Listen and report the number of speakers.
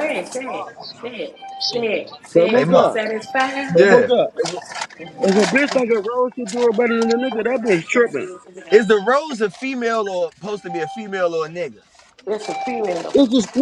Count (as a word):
three